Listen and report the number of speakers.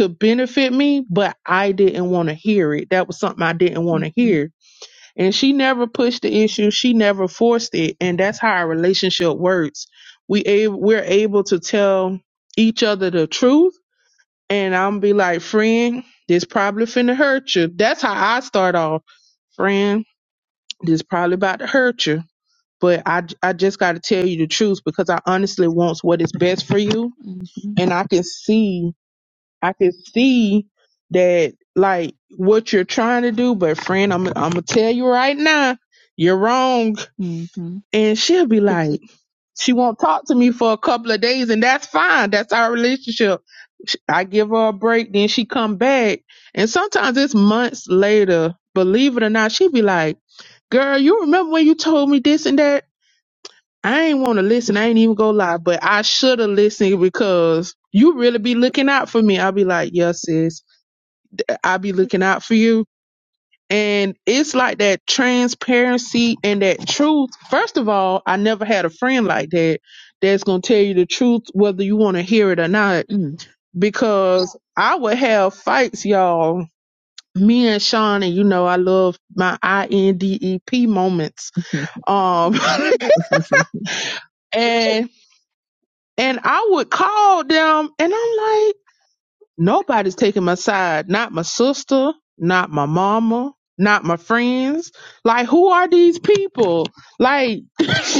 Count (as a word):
two